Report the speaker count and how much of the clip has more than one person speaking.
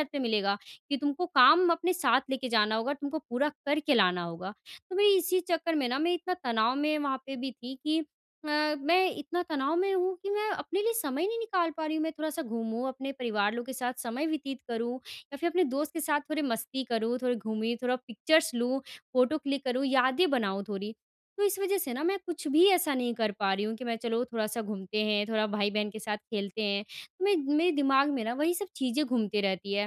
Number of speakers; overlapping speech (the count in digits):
1, no overlap